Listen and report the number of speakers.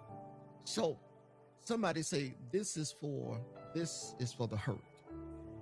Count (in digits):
1